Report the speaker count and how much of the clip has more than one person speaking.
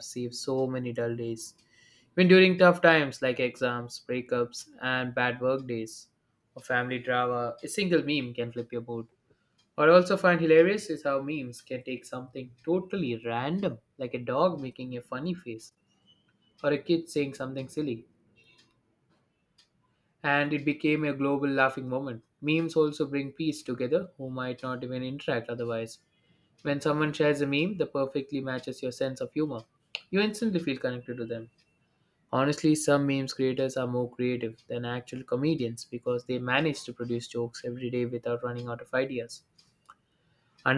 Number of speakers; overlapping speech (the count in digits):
1, no overlap